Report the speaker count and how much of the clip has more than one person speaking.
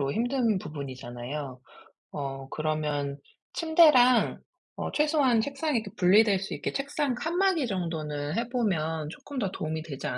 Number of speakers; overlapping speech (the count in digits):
1, no overlap